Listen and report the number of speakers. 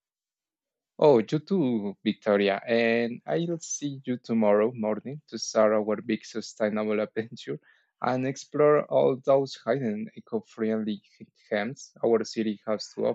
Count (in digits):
1